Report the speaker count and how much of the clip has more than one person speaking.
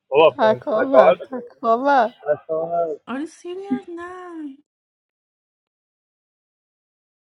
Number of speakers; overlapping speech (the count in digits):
3, about 15%